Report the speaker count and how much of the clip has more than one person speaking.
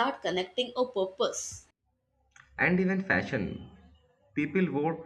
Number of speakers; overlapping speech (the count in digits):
2, no overlap